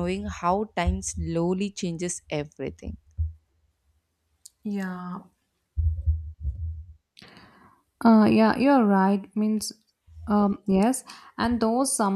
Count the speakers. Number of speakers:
2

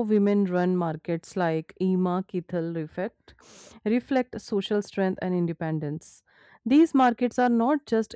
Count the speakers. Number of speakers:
1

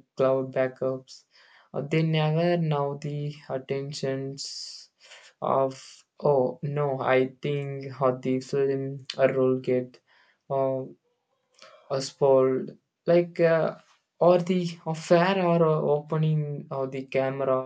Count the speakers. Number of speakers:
1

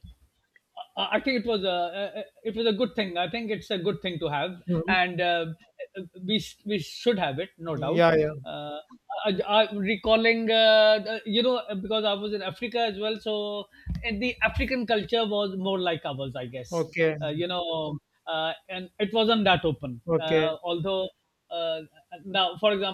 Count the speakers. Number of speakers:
2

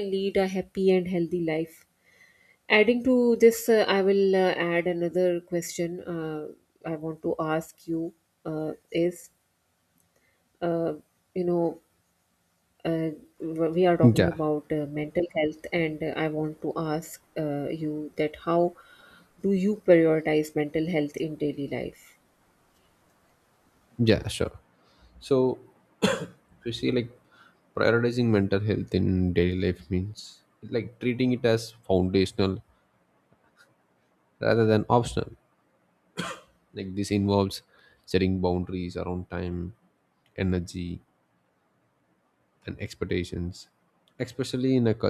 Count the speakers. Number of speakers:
2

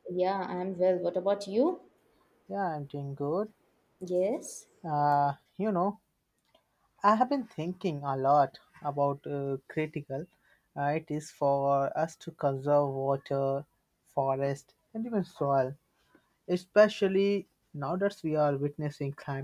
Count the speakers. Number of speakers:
2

